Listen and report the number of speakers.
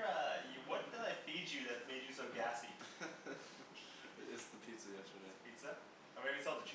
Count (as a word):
two